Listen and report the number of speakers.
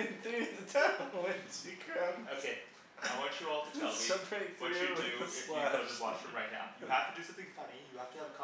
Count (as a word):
two